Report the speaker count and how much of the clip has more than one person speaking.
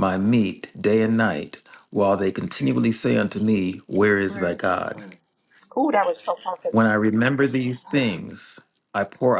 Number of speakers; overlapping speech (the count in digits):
2, about 9%